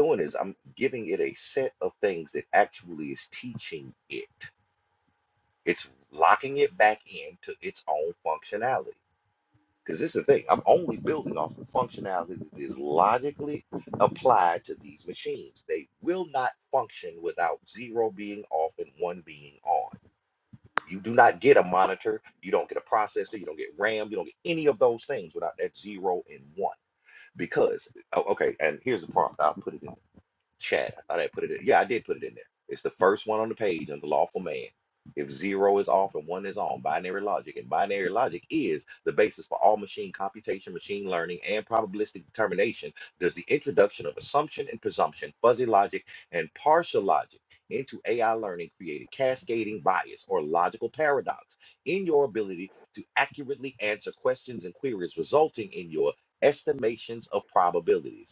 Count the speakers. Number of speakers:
one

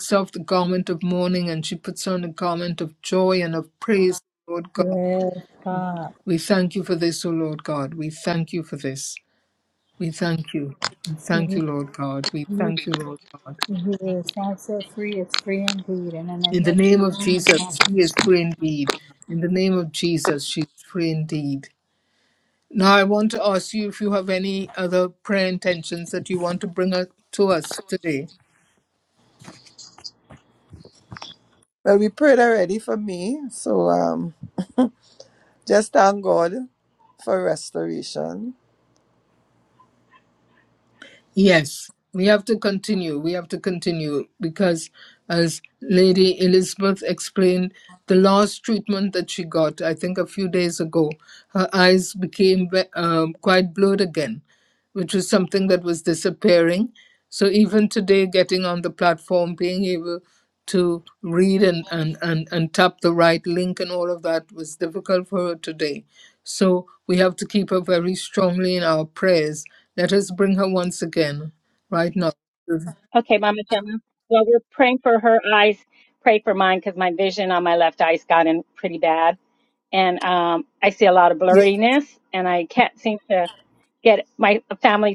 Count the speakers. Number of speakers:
four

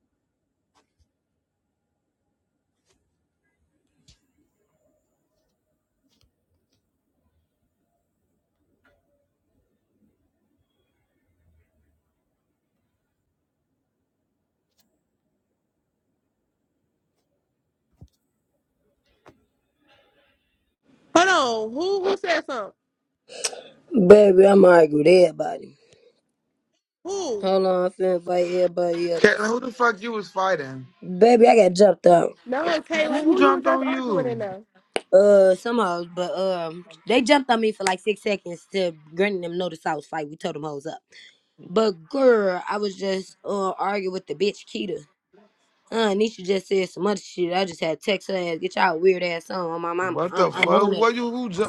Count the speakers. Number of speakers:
three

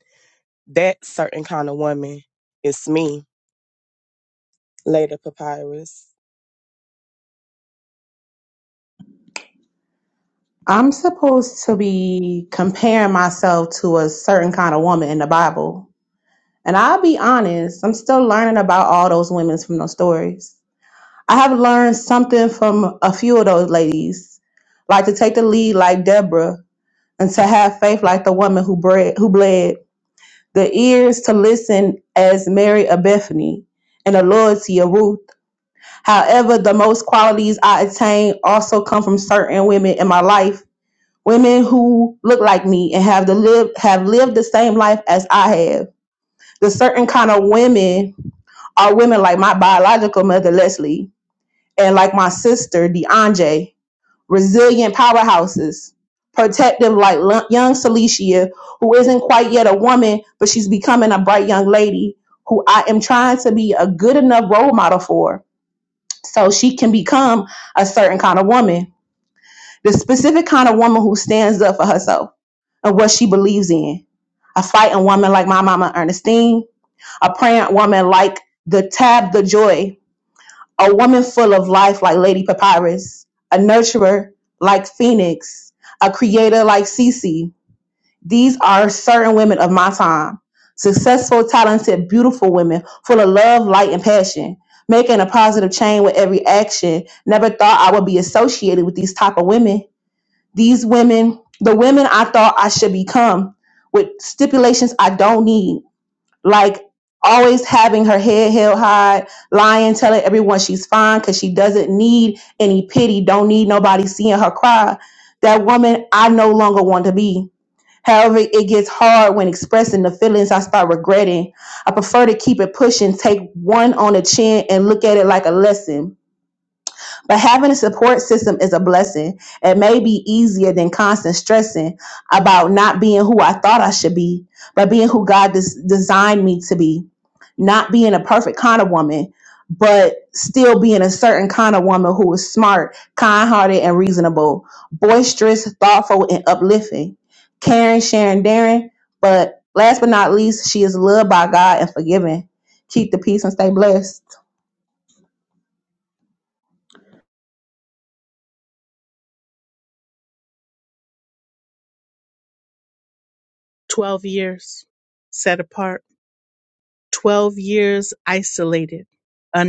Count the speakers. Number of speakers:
three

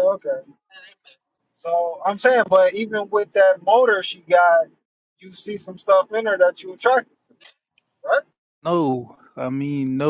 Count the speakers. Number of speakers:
two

